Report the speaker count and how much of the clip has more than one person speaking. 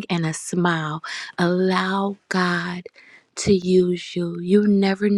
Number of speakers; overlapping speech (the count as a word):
one, no overlap